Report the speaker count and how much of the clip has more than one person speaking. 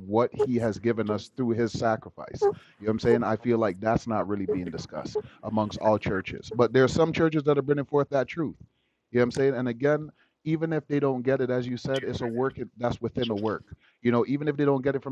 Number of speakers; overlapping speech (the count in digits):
1, no overlap